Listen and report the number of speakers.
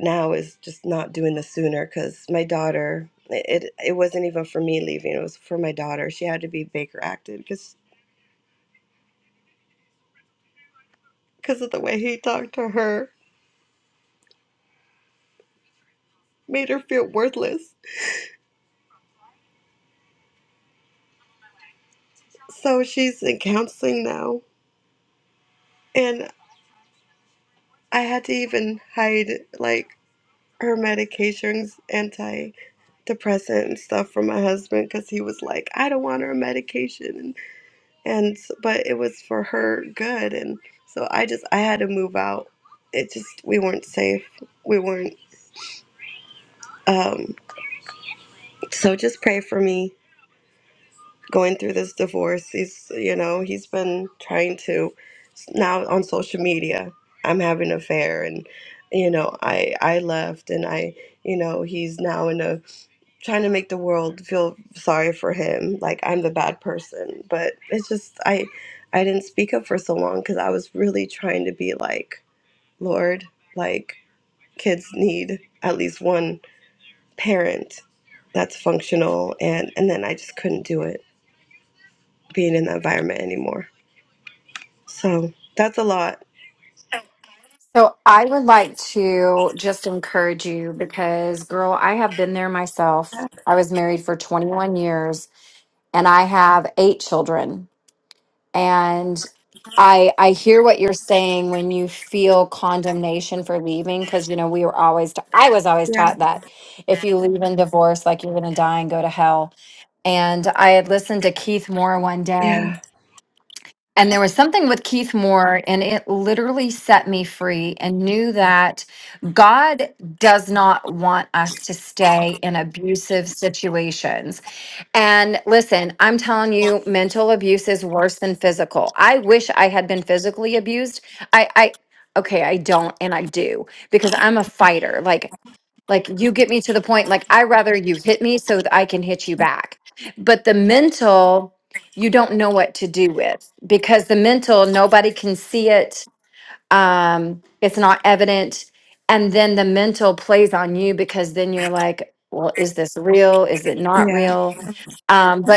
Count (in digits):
2